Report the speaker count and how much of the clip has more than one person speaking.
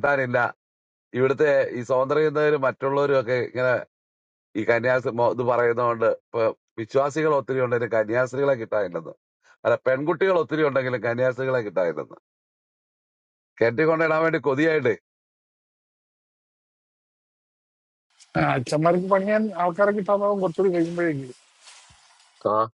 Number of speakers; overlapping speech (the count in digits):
2, no overlap